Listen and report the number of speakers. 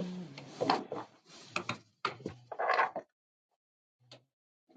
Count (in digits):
0